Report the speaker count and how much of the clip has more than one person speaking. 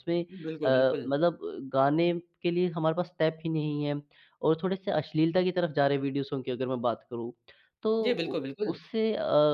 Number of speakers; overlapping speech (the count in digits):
2, about 13%